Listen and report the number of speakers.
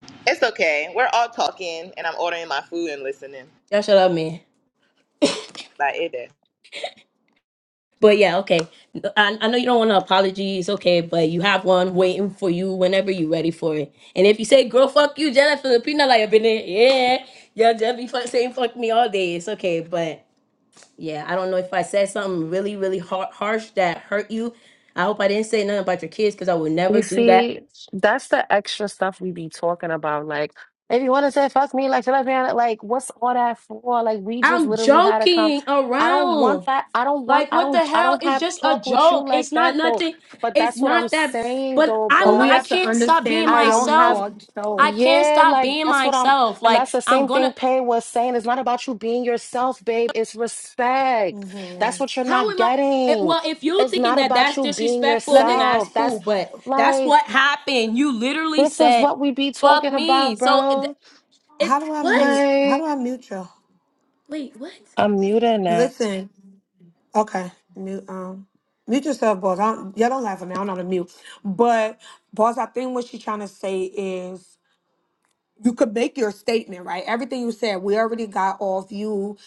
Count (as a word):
four